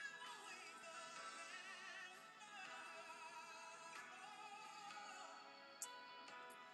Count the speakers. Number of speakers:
zero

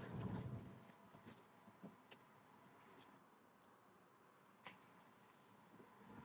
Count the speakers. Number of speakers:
zero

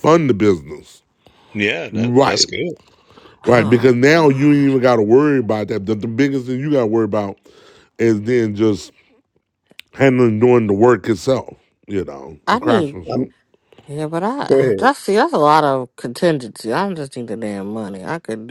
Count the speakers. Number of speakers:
three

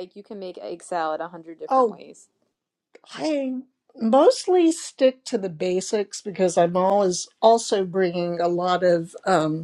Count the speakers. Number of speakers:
two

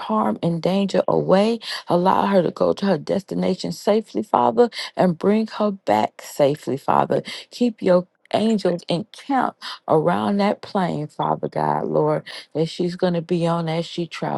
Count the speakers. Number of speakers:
one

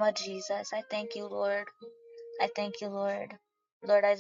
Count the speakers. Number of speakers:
one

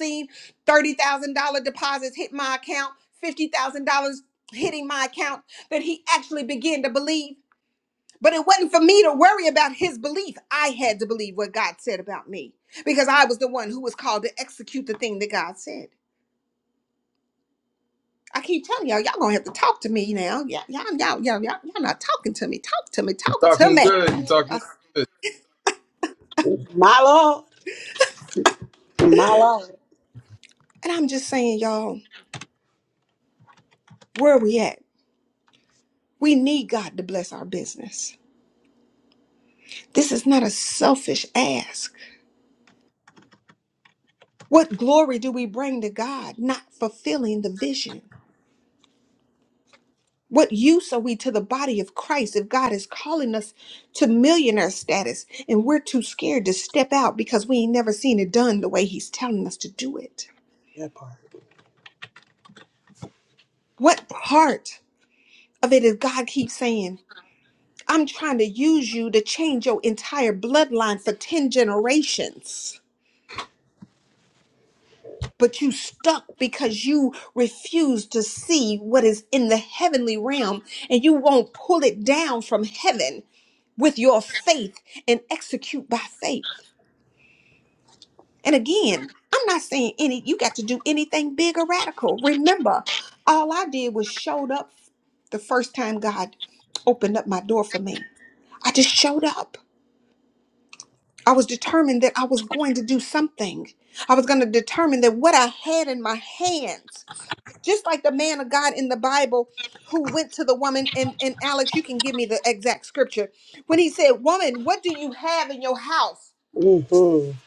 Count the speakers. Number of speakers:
three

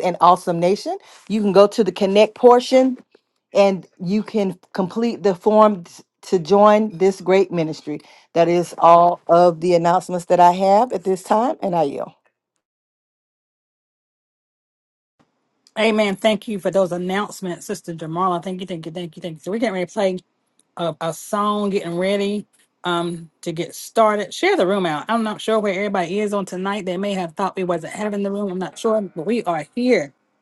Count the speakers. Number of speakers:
two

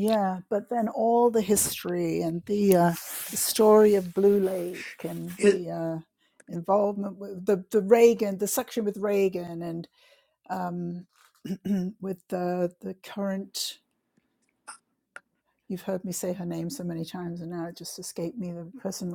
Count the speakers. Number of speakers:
one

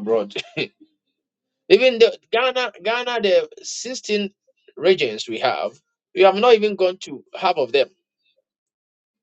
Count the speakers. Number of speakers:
one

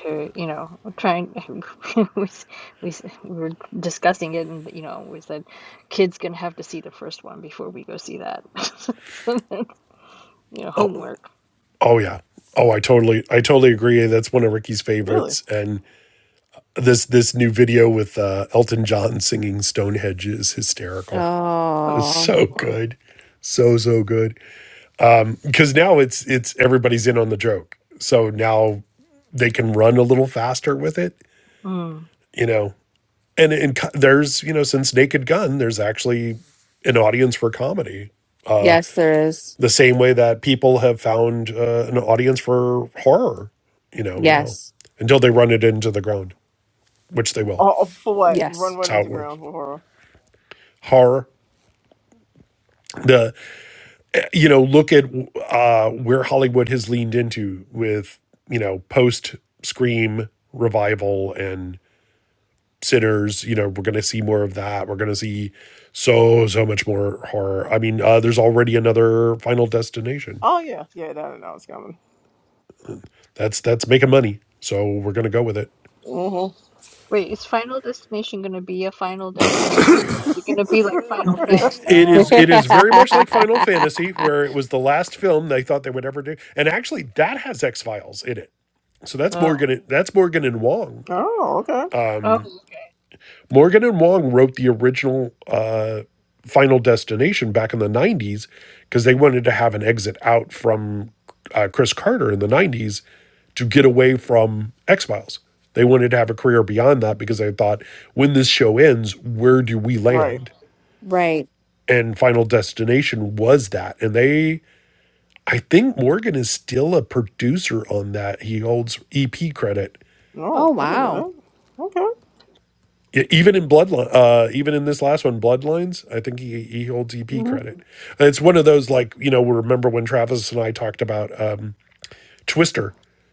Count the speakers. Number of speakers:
four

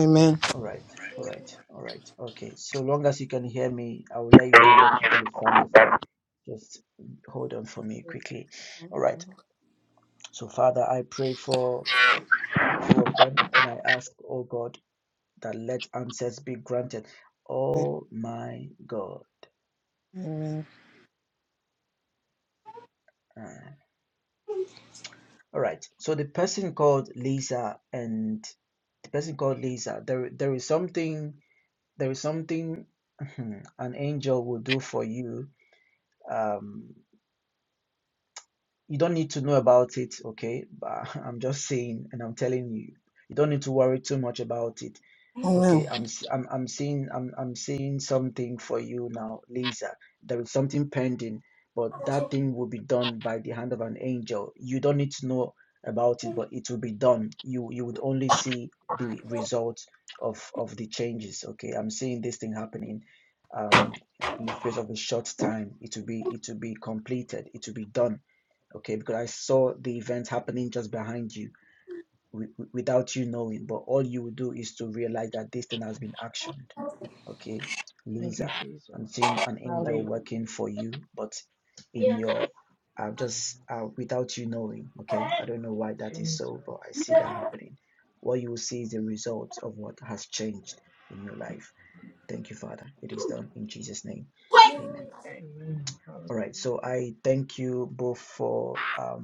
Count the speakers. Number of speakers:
three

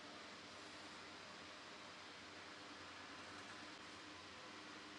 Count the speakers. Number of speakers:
zero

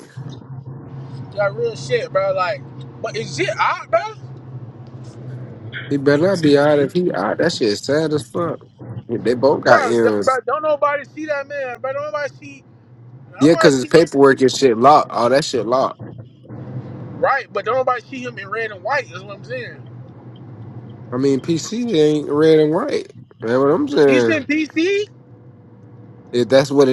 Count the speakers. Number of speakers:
two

